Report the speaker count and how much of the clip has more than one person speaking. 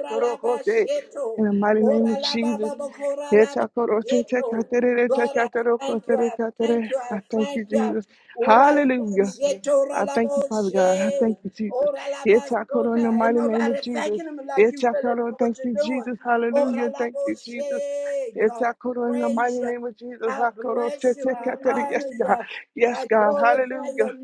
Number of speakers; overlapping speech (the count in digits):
2, about 70%